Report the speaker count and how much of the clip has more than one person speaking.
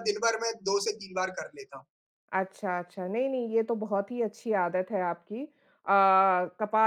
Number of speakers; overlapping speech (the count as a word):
two, no overlap